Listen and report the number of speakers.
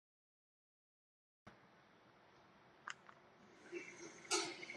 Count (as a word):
zero